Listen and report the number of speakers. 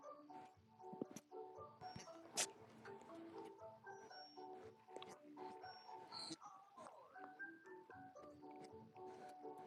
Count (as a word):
zero